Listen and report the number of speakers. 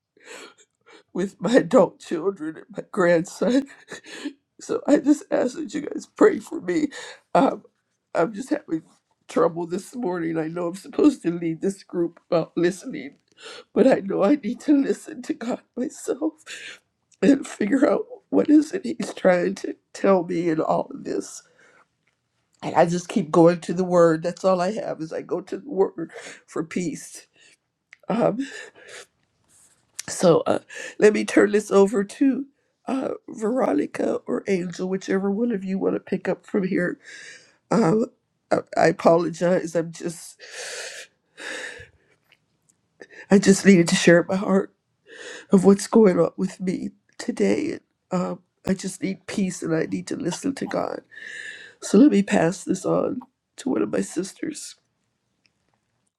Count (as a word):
one